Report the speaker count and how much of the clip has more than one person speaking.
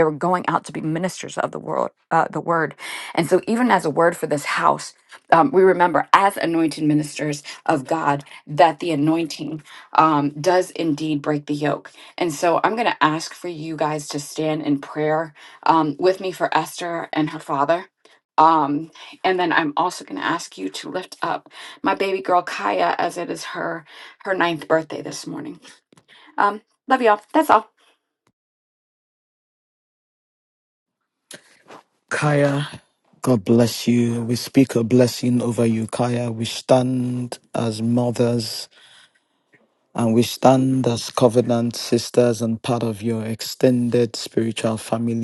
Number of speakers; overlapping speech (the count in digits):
2, no overlap